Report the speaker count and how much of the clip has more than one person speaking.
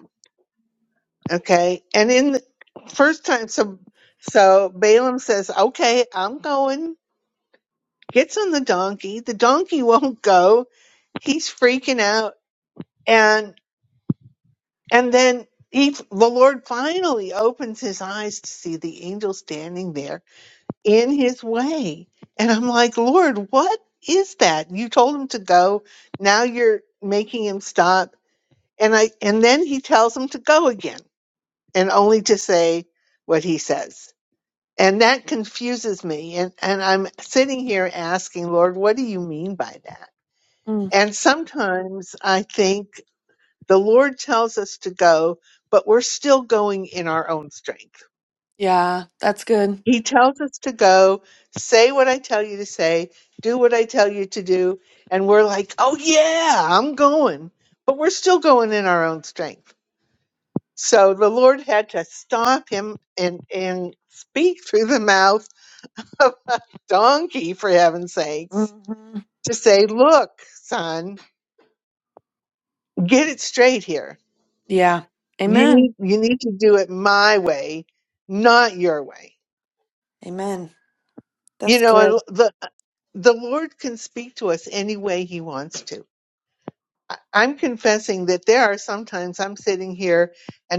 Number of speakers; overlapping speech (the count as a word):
two, about 1%